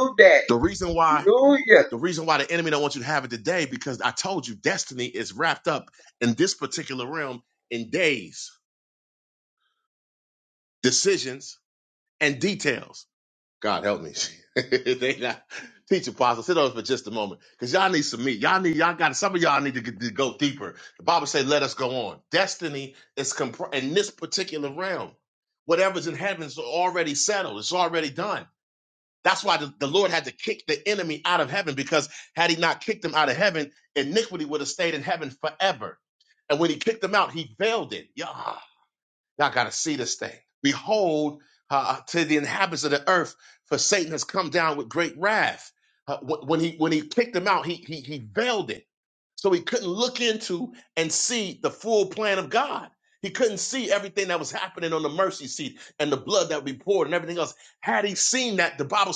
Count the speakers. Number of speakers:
2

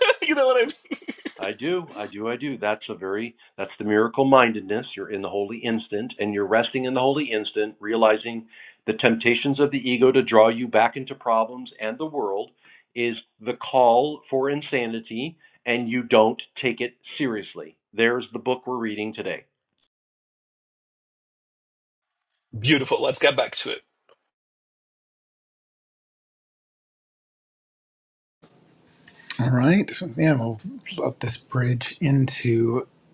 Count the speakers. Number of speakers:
3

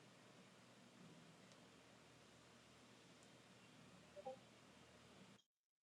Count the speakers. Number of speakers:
0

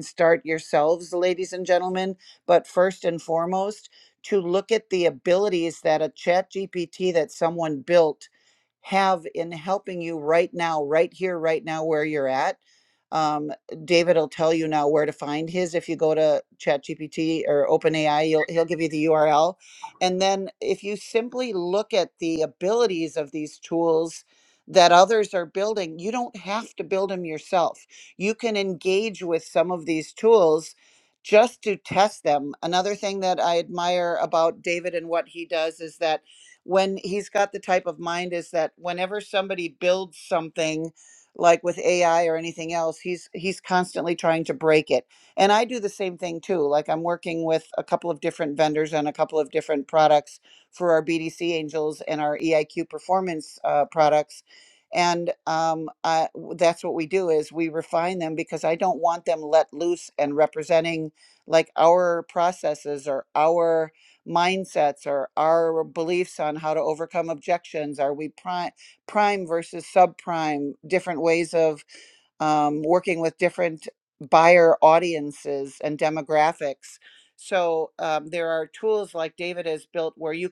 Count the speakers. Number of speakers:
1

